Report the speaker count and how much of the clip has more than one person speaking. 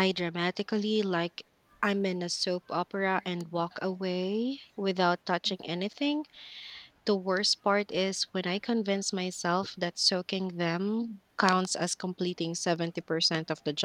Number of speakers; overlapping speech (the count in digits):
1, no overlap